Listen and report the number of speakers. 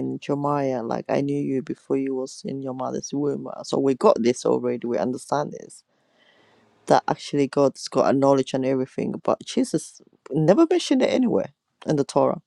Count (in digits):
1